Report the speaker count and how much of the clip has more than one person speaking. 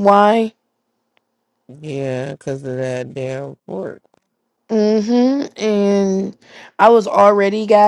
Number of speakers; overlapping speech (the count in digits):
2, no overlap